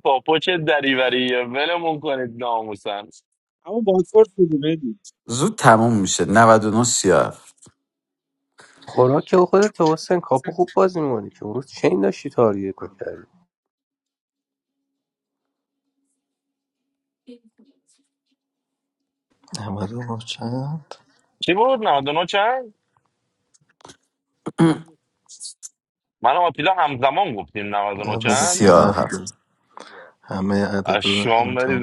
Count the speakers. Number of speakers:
5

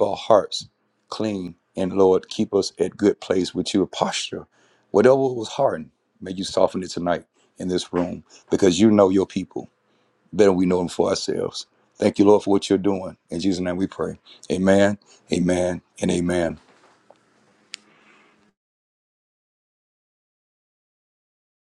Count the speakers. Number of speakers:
1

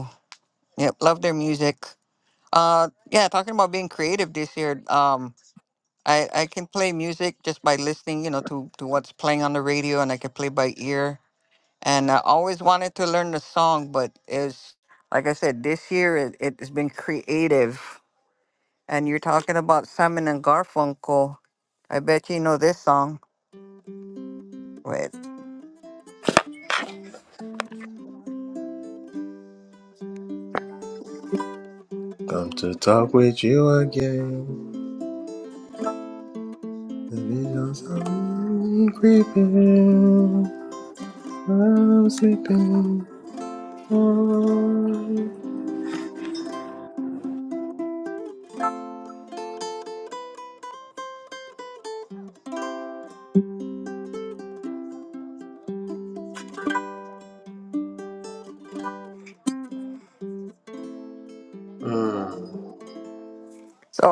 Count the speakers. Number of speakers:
2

